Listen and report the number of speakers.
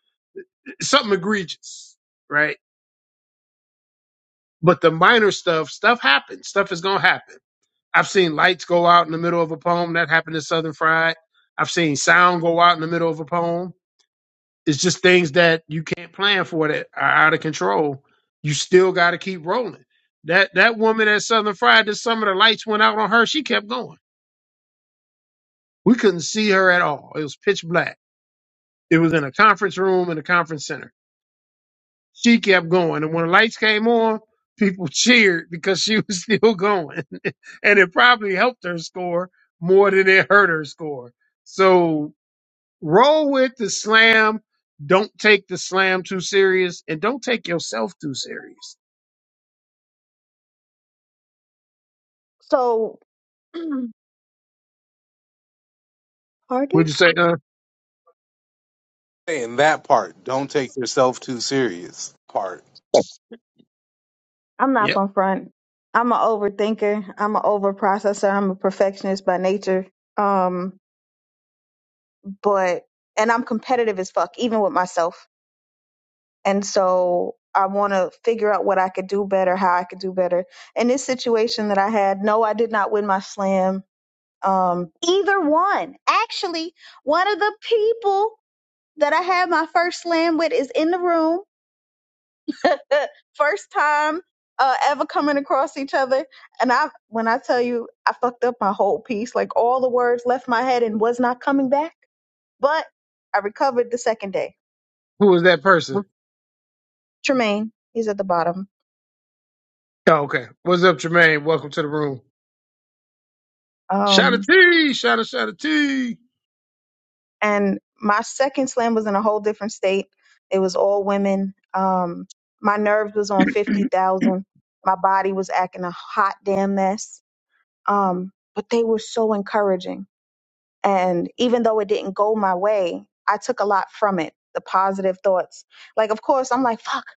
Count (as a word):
three